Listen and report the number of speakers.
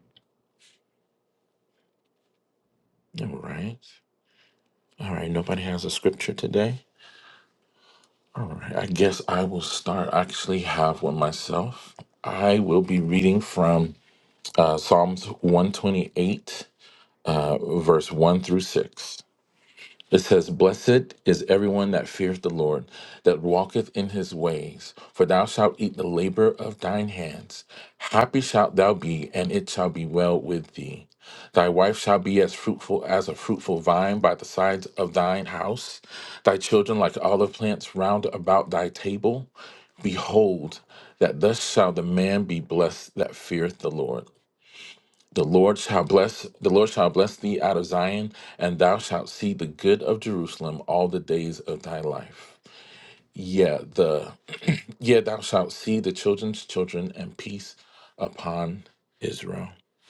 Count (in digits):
1